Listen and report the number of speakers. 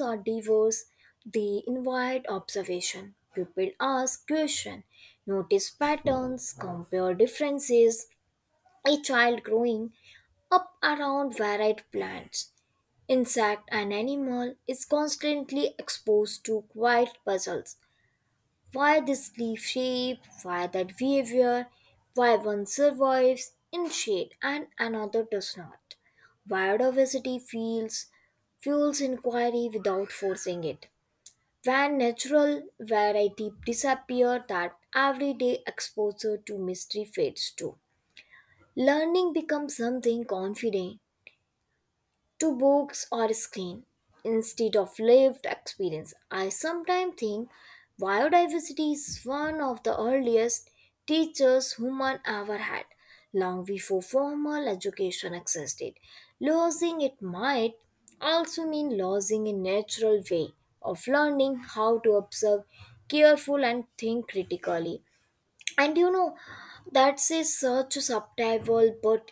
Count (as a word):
one